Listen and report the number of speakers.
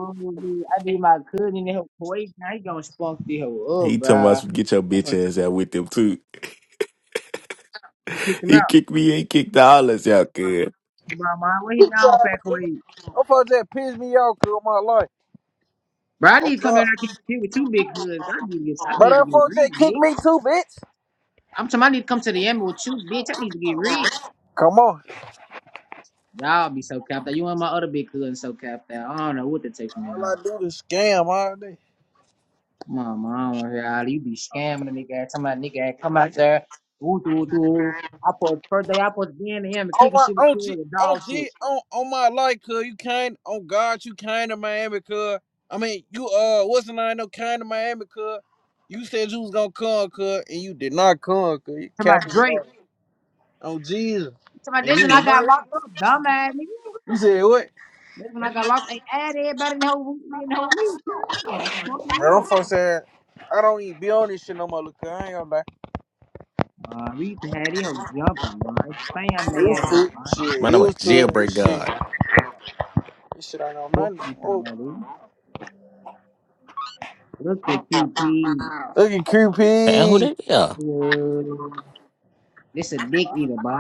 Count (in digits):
3